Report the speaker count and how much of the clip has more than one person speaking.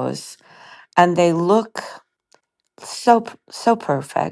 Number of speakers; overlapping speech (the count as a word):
one, no overlap